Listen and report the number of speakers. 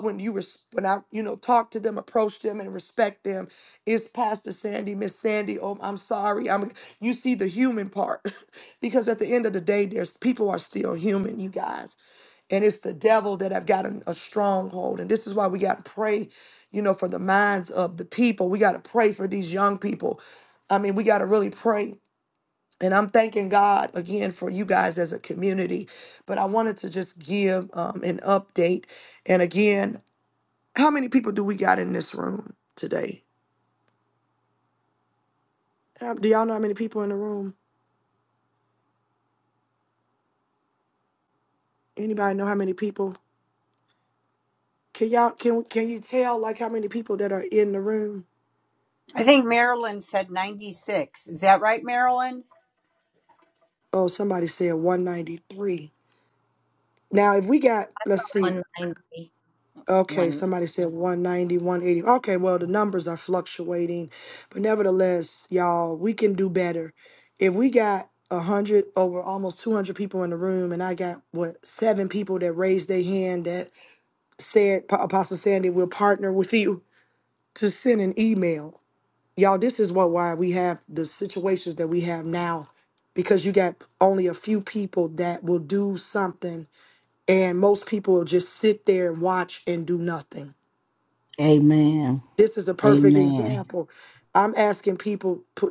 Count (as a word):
four